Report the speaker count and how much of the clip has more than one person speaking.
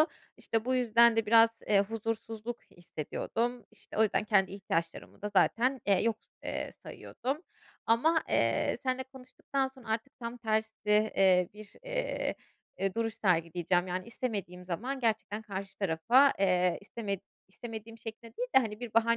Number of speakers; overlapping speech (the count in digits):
1, no overlap